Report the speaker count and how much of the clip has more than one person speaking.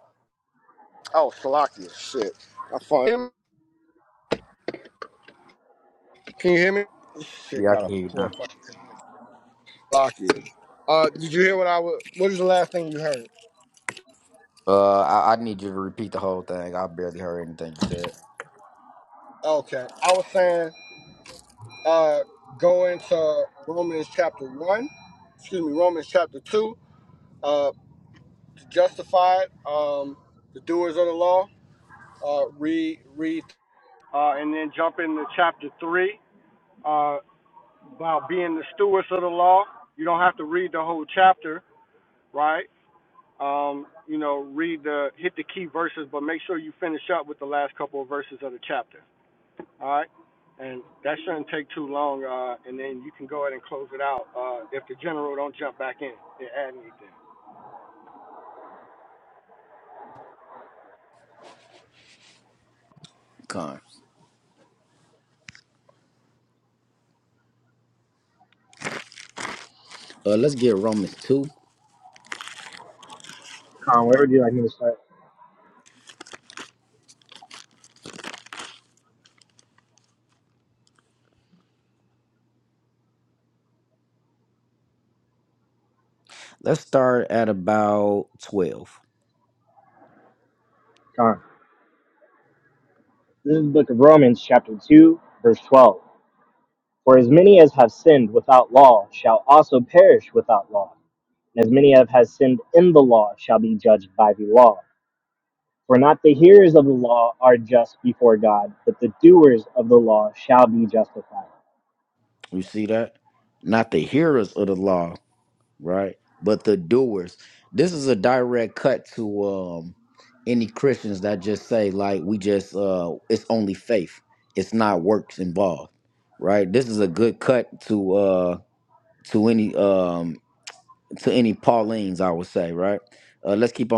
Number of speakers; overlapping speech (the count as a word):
three, about 1%